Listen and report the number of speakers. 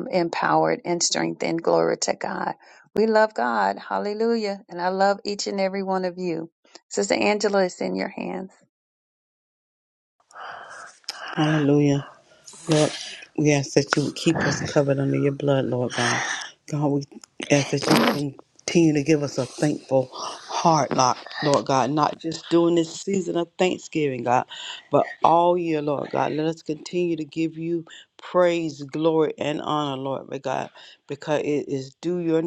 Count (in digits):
2